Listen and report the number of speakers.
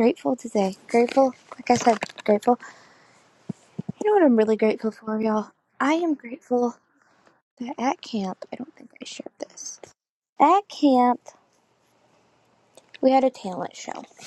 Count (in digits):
1